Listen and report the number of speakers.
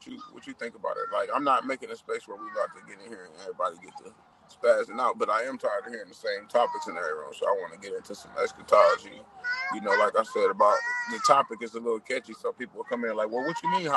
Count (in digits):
1